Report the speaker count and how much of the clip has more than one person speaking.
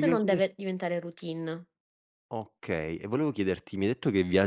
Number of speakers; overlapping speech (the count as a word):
two, about 10%